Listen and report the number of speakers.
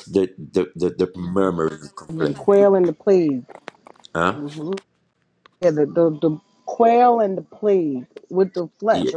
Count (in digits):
2